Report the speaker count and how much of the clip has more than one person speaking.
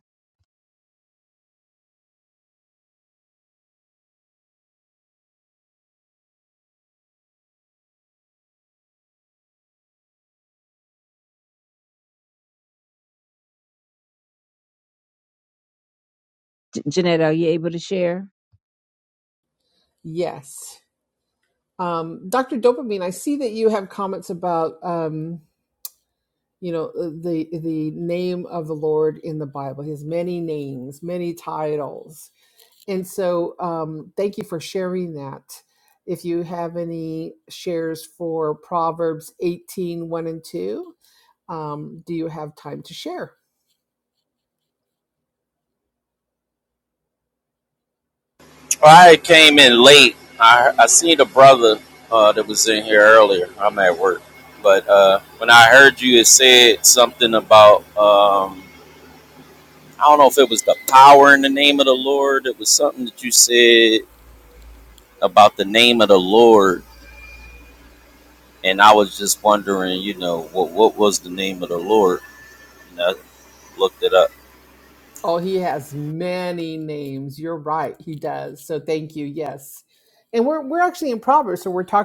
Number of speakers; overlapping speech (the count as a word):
three, no overlap